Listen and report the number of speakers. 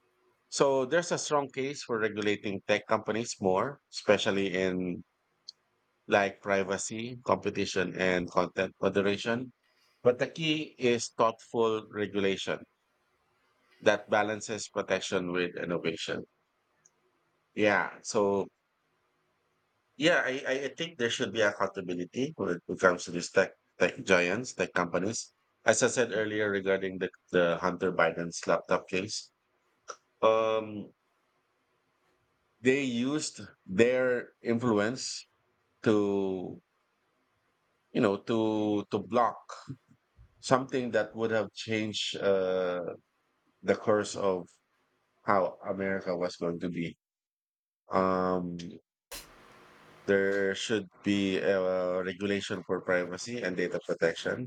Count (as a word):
one